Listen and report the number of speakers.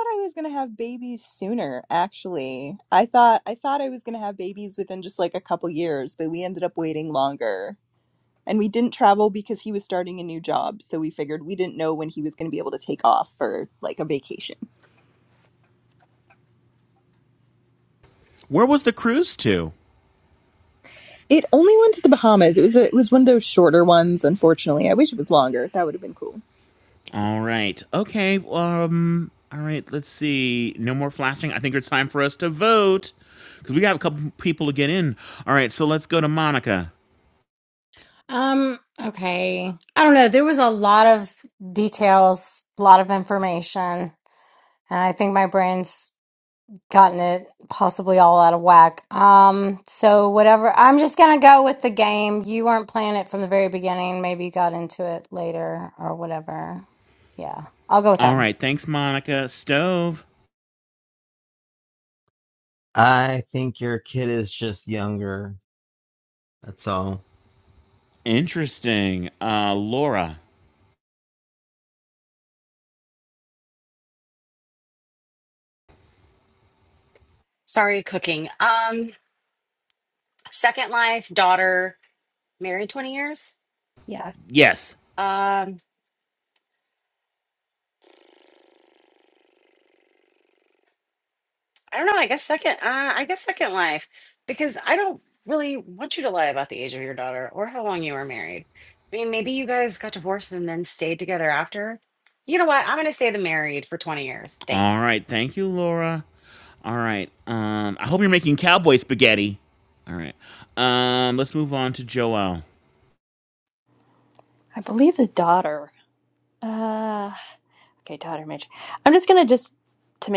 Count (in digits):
6